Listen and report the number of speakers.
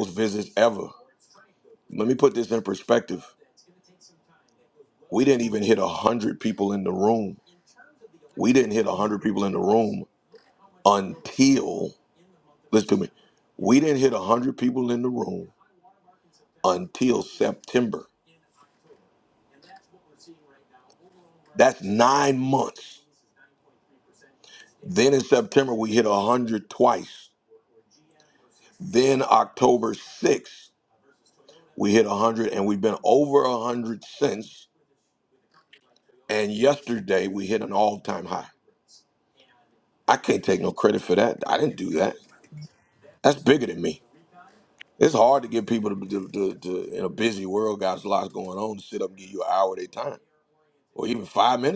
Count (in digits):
1